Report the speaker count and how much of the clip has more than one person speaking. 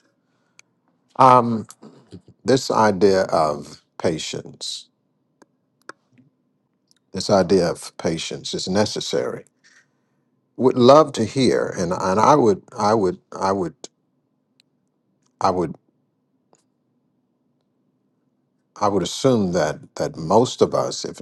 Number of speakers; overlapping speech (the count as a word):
one, no overlap